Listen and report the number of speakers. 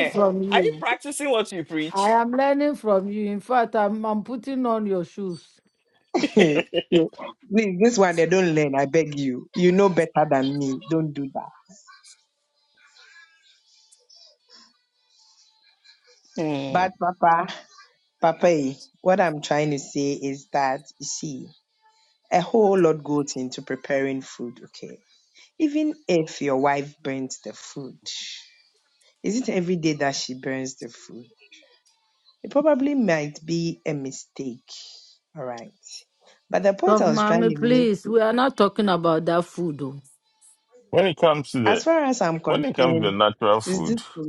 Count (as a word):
four